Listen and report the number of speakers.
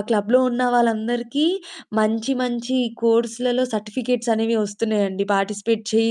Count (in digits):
1